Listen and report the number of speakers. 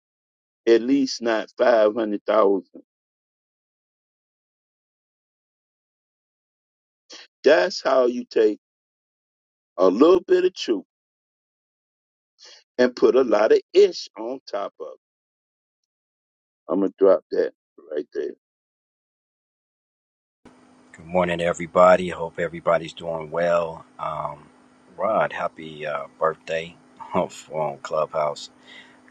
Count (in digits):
2